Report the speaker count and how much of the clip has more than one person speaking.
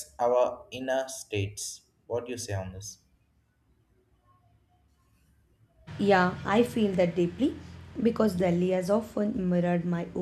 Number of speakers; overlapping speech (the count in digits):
2, no overlap